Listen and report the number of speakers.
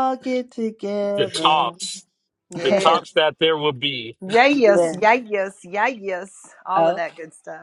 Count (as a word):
three